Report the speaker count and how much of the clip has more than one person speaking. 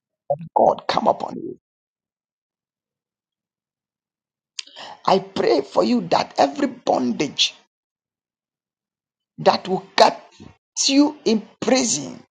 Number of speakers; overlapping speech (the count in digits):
1, no overlap